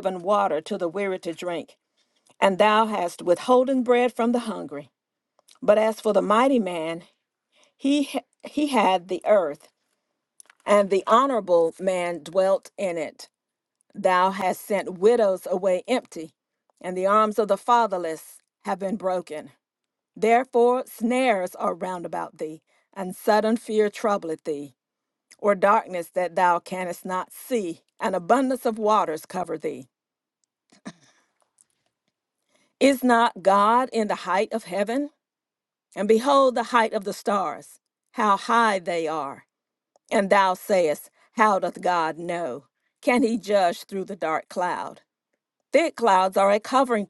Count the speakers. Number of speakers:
1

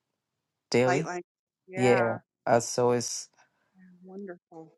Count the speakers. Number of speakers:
2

